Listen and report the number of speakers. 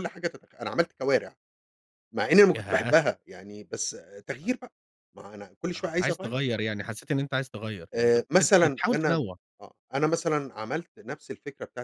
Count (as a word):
two